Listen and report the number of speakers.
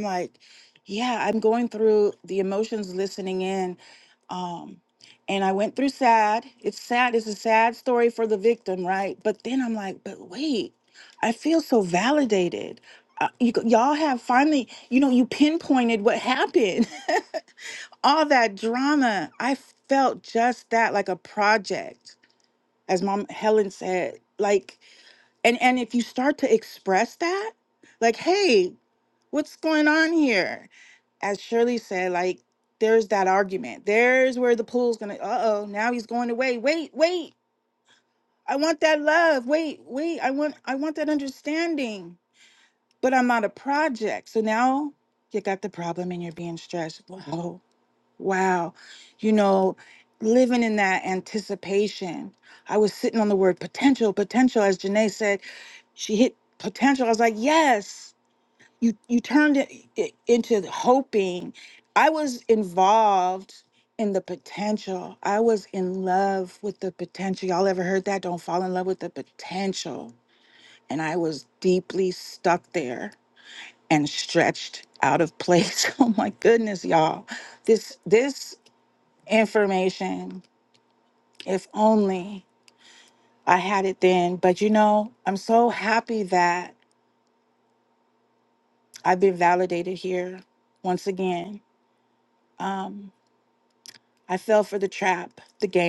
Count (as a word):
one